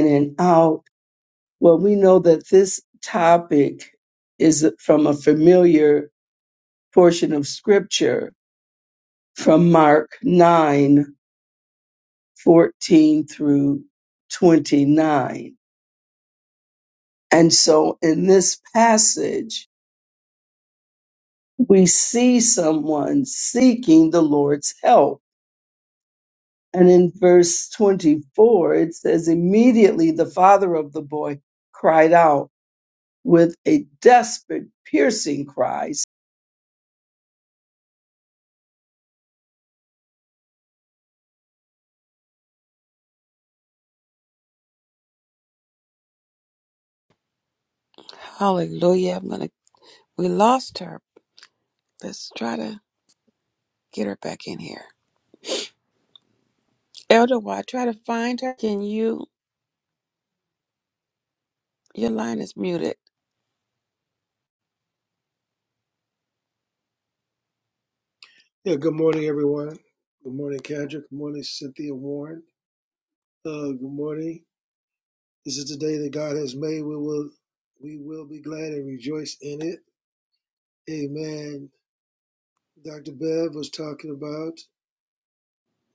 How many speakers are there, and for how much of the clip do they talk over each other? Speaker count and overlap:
3, no overlap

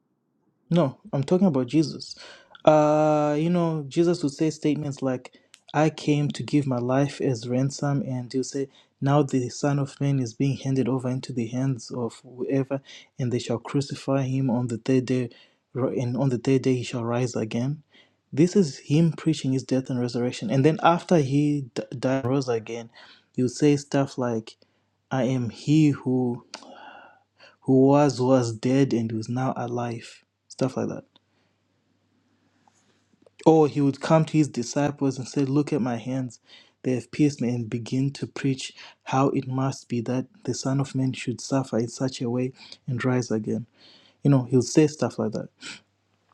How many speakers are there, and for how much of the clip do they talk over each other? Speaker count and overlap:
1, no overlap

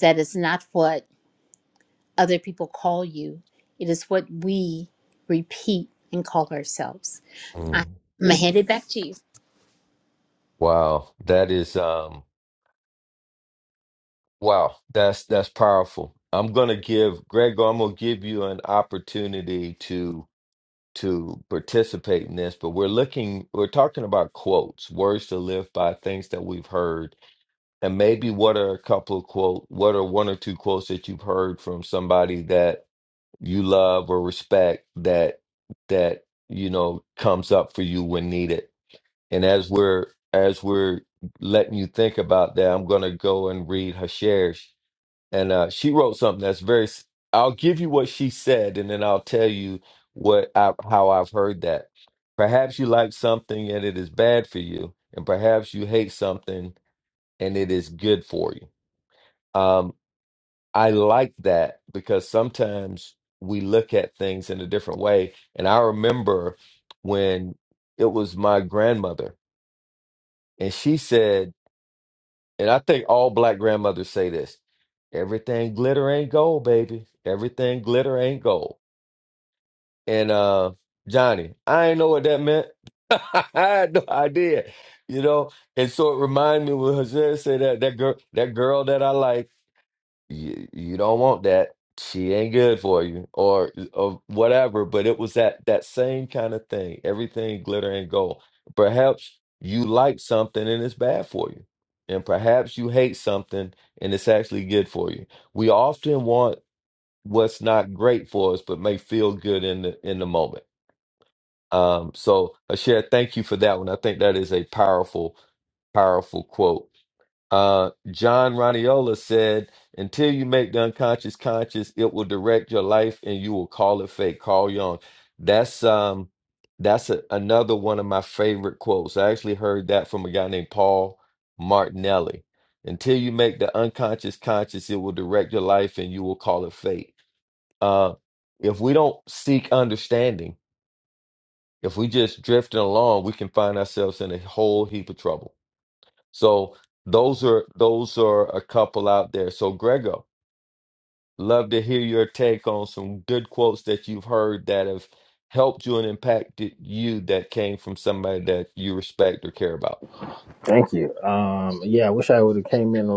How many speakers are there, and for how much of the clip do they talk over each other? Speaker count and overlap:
3, under 1%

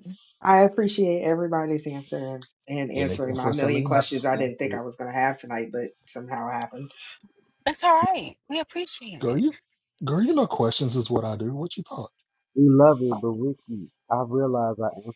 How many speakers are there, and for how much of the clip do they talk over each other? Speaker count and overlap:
4, about 10%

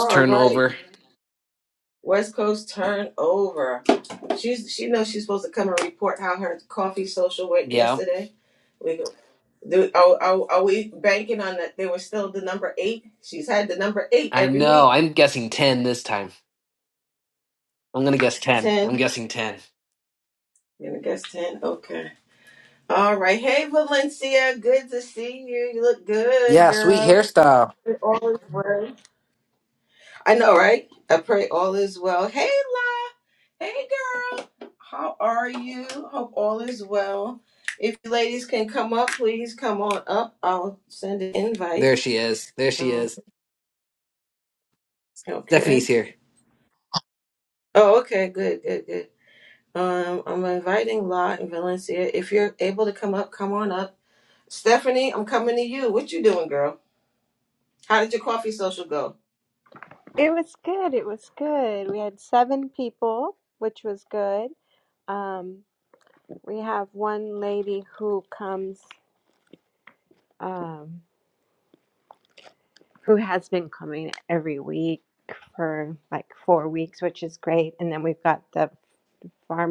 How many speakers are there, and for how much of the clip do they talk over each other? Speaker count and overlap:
3, about 4%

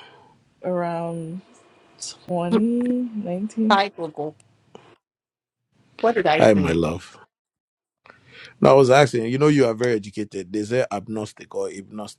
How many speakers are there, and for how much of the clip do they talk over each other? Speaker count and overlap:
3, about 3%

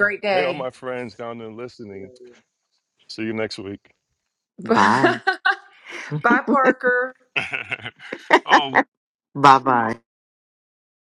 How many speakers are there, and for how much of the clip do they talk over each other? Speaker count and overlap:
3, about 7%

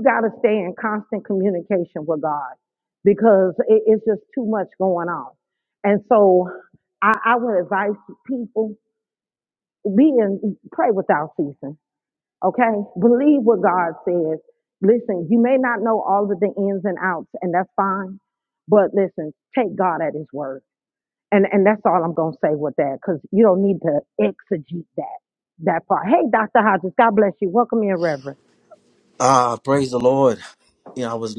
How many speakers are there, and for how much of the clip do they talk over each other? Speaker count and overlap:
2, no overlap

